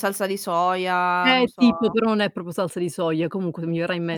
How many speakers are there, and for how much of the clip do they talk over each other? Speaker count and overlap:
2, about 19%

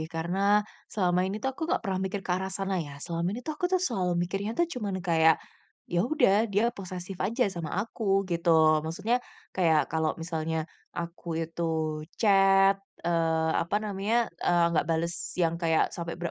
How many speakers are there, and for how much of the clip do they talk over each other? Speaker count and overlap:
1, no overlap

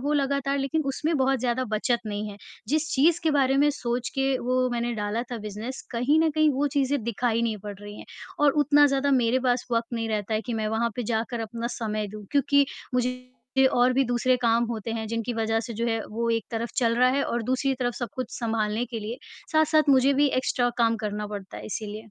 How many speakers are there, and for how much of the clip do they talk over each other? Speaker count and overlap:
1, no overlap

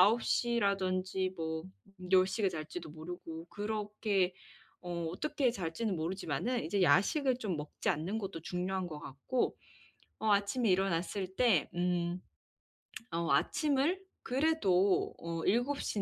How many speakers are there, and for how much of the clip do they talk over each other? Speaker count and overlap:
1, no overlap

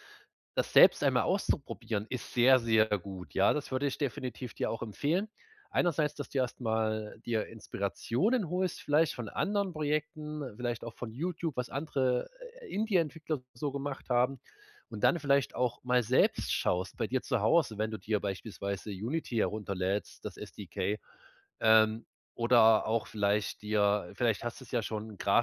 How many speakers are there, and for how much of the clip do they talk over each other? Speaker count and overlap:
1, no overlap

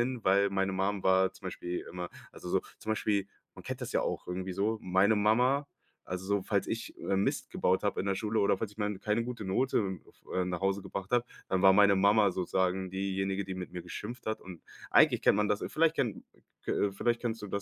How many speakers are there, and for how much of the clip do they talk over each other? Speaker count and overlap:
1, no overlap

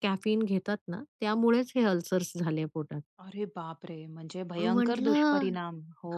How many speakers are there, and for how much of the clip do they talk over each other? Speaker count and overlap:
2, about 16%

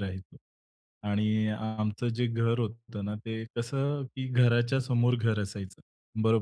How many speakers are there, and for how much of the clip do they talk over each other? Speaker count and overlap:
1, no overlap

